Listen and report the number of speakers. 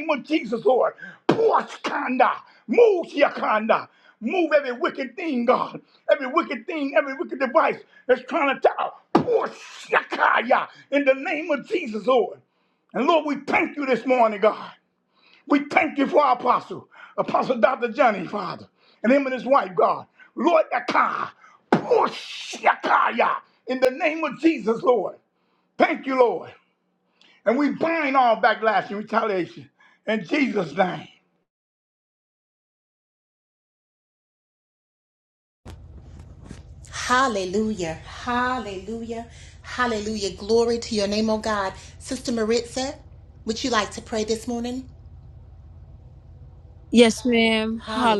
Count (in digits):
3